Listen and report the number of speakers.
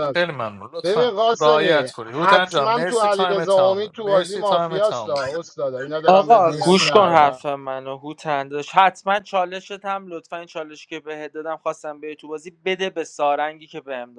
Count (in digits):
3